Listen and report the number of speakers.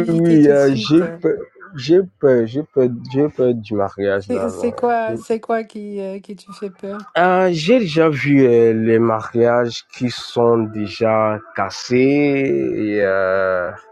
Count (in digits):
2